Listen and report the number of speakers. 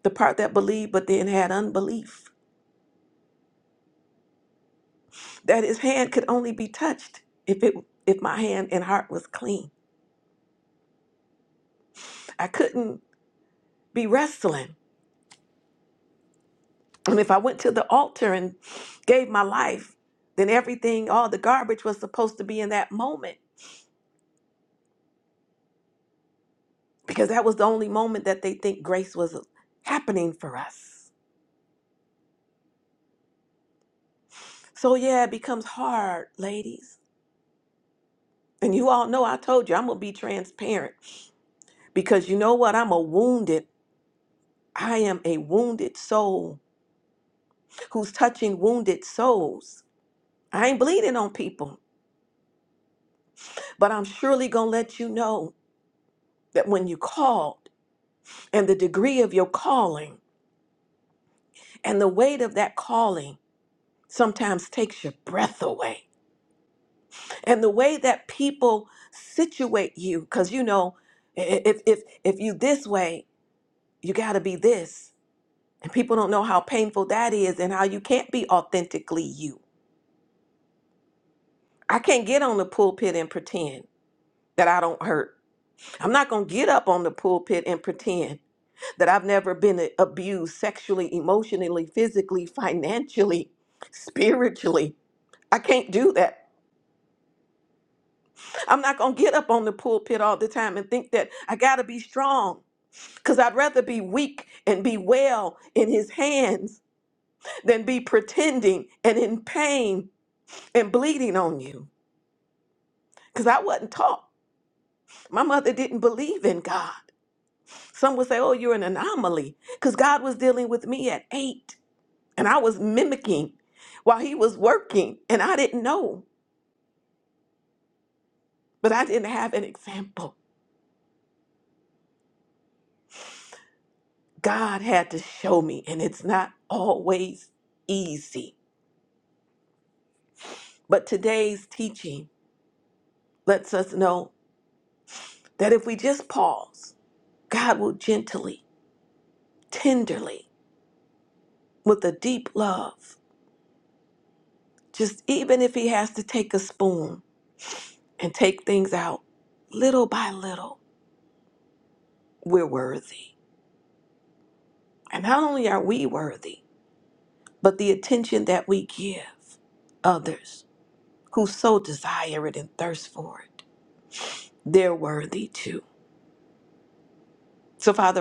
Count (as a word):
one